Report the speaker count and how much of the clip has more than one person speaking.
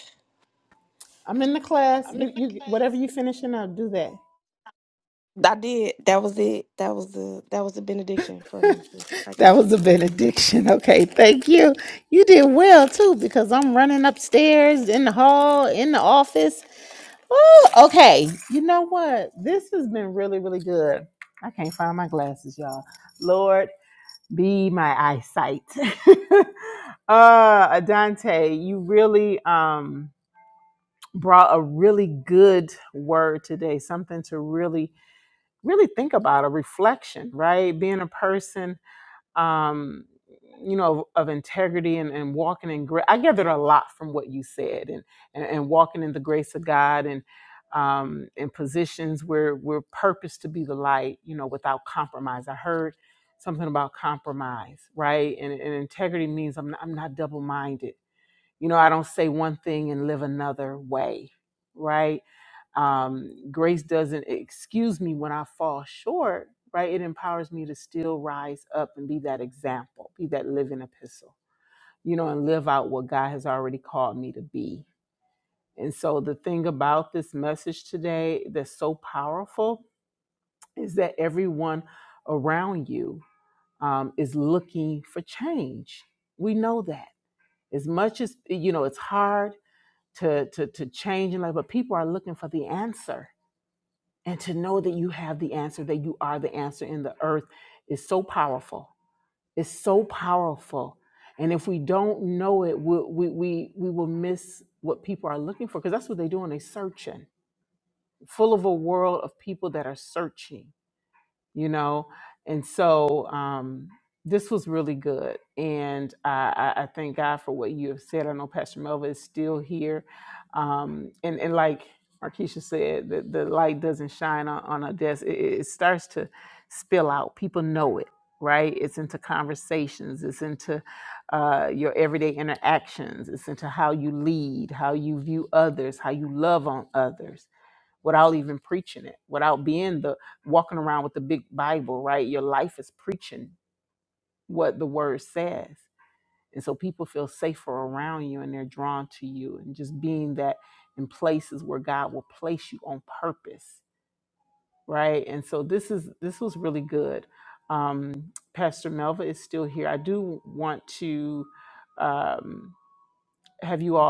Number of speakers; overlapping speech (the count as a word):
two, under 1%